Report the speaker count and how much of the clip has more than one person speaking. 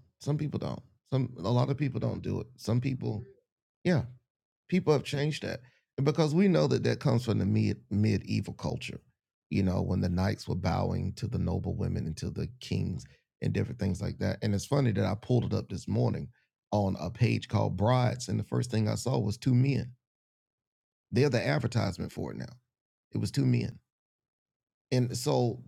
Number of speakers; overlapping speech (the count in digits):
1, no overlap